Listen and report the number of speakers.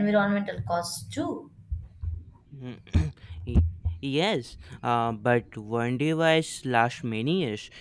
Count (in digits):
2